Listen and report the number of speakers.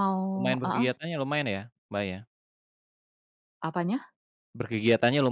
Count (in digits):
2